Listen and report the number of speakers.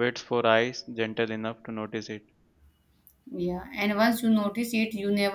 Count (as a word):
two